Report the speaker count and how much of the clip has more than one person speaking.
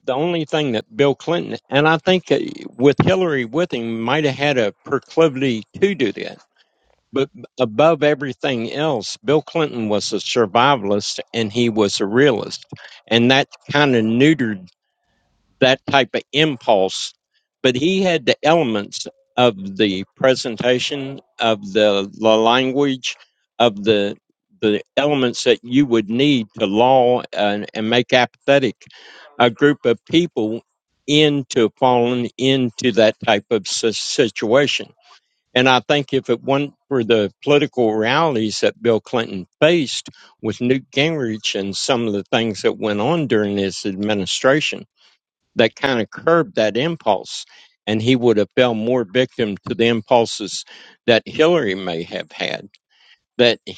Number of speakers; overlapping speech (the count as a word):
one, no overlap